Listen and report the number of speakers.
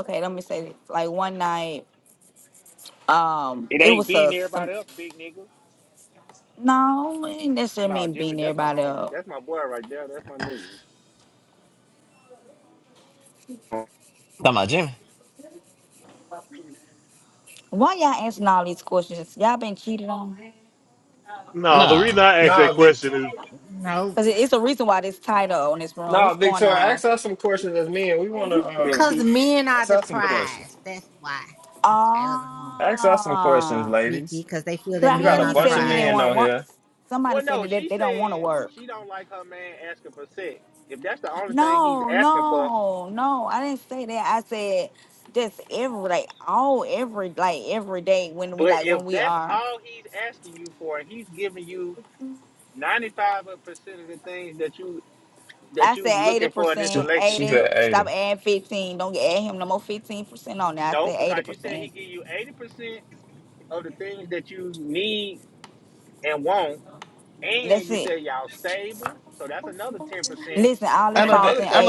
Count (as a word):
six